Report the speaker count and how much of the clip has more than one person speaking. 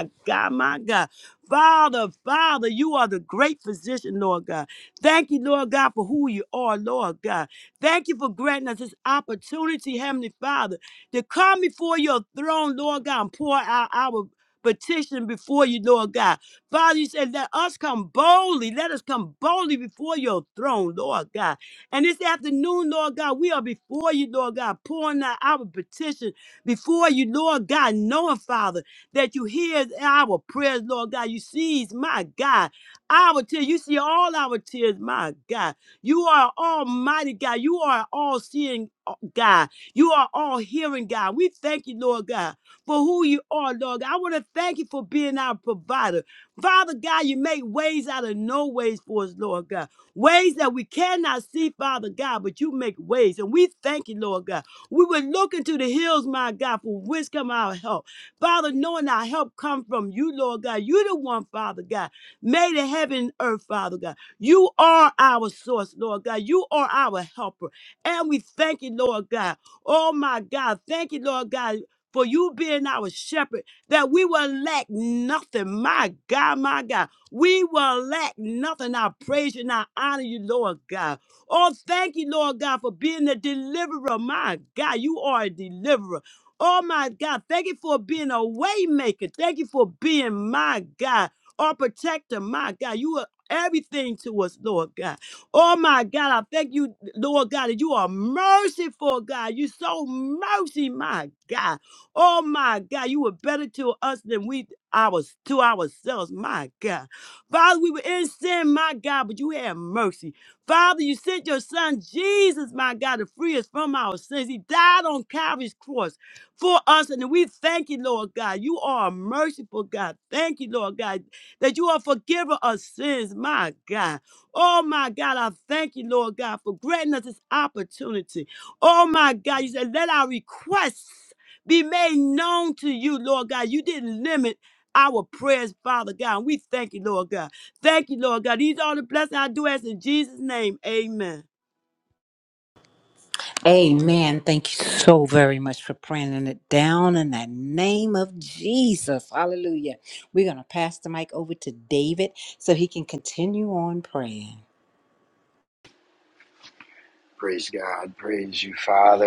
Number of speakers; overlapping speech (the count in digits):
3, no overlap